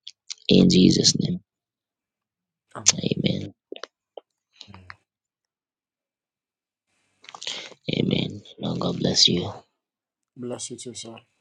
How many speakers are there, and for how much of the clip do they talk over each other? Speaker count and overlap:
two, about 2%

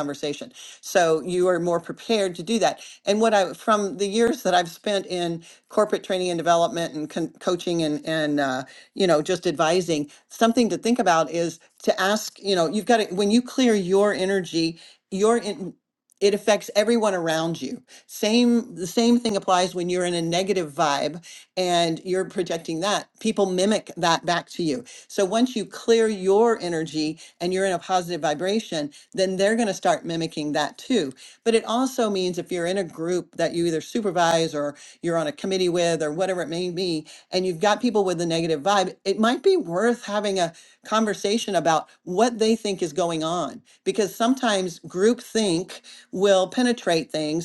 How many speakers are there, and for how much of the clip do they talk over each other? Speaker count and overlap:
one, no overlap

